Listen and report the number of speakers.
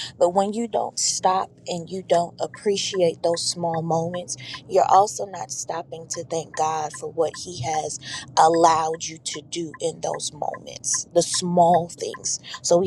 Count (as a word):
one